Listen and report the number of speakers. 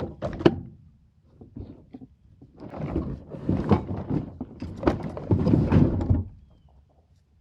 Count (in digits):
0